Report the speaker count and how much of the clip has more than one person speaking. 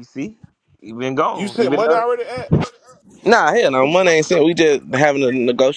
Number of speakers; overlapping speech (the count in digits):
3, about 12%